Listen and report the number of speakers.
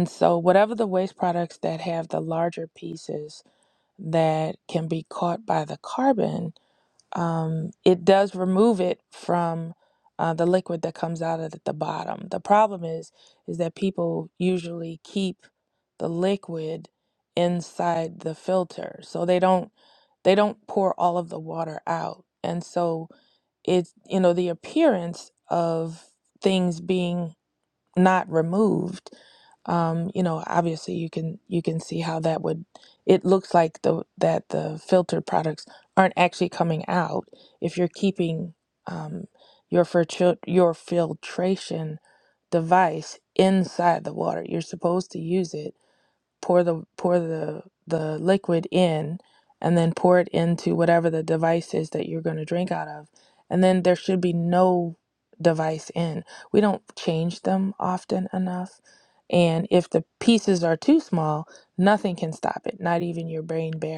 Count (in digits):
1